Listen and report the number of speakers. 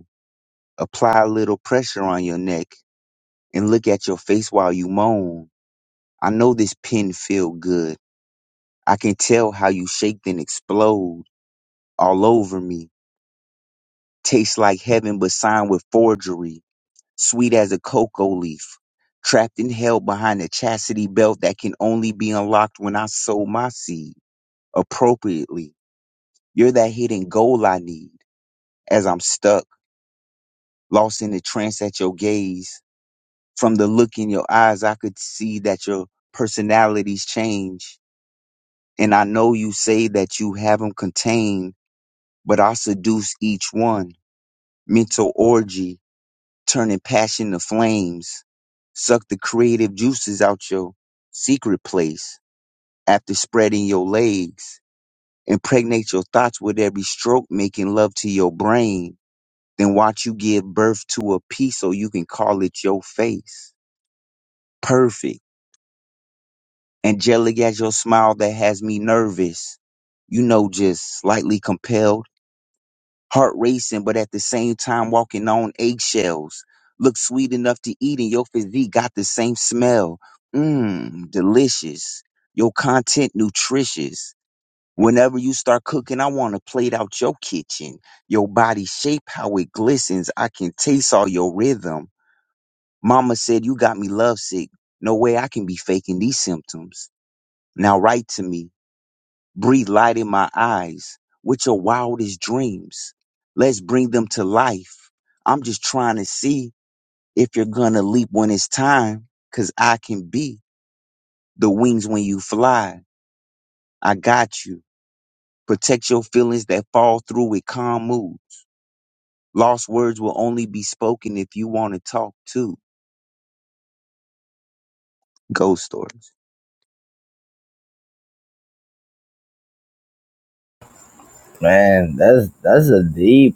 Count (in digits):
2